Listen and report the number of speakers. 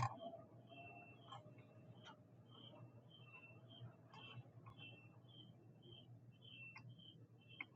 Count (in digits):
0